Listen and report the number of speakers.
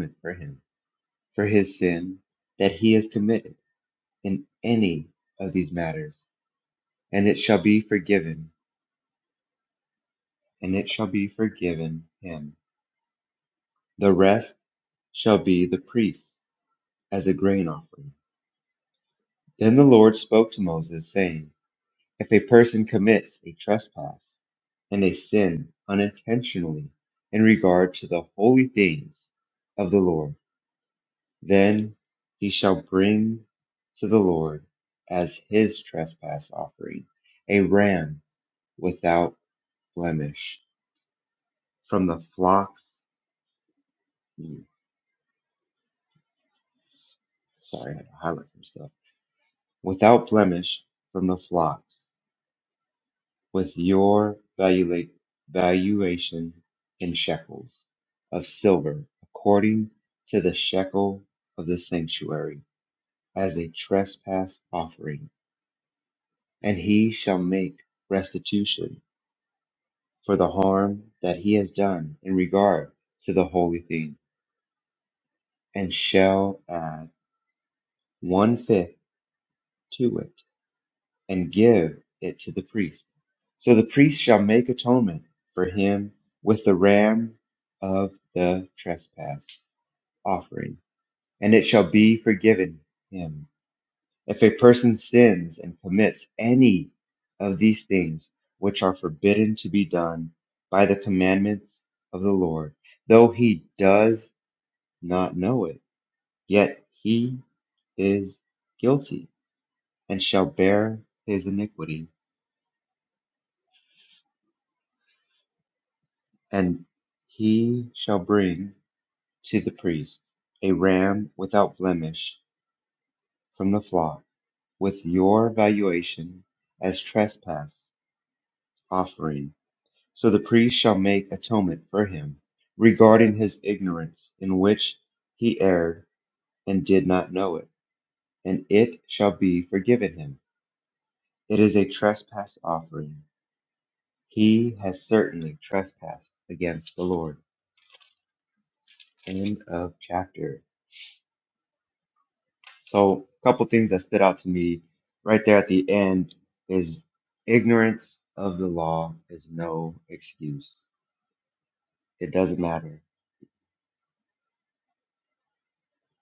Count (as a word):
one